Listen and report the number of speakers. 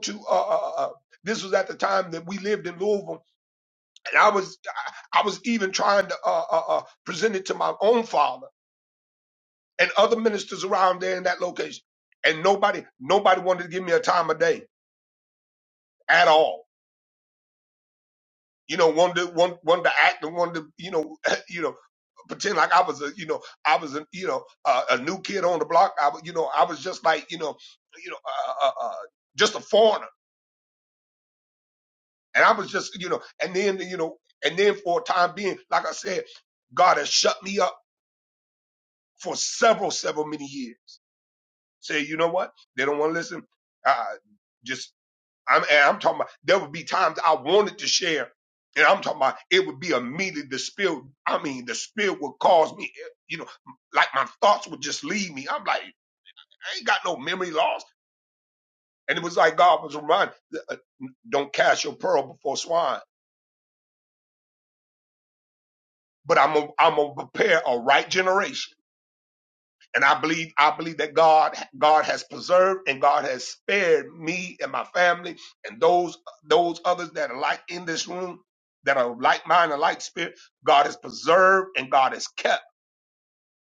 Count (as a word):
one